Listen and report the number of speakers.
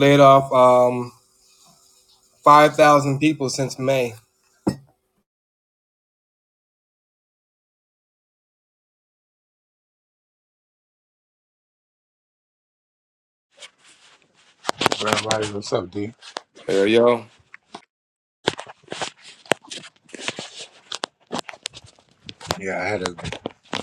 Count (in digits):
2